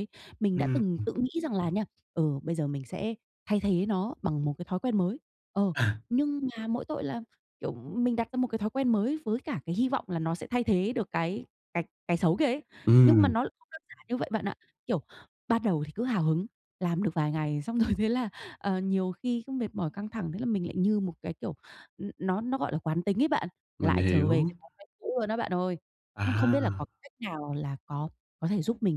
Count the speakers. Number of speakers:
2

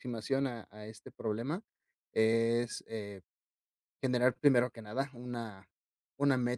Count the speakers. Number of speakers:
1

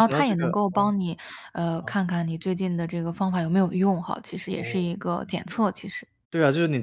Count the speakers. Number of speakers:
2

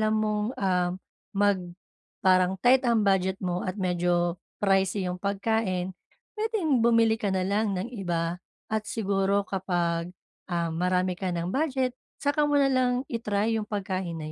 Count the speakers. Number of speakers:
1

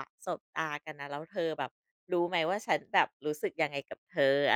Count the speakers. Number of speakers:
1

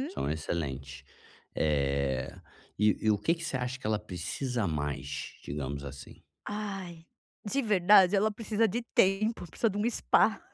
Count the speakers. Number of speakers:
2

